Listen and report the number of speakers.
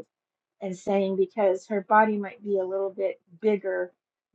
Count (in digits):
1